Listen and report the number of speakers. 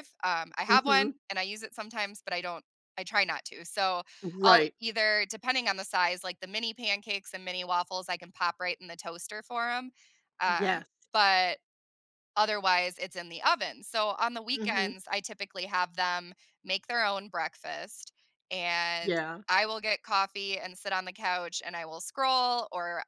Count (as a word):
two